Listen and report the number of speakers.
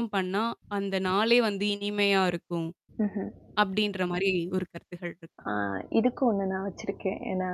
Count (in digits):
2